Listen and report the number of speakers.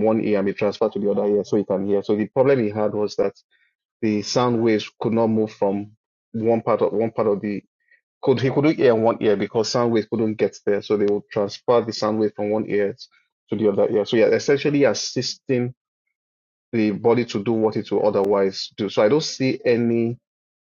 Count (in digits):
1